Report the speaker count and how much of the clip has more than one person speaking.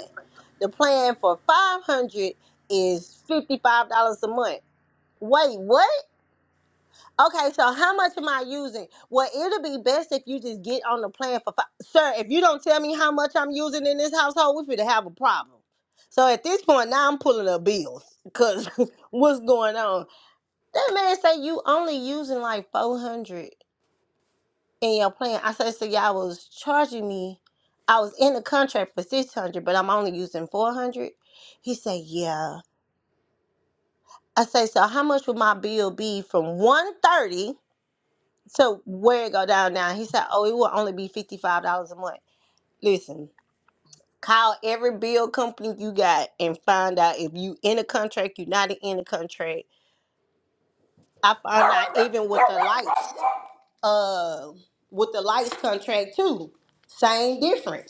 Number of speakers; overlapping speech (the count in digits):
1, no overlap